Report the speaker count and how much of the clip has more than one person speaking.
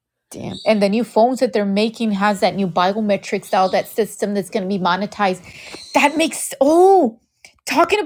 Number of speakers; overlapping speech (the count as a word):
one, no overlap